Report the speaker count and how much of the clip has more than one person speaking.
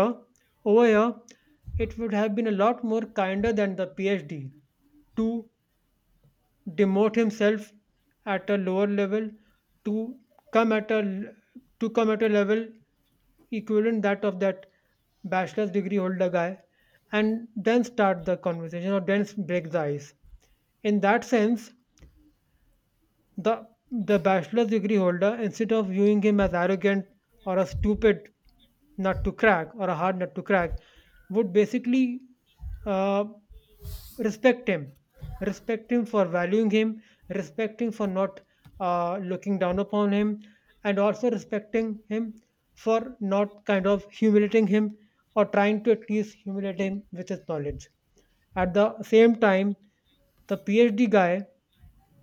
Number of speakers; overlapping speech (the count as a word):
one, no overlap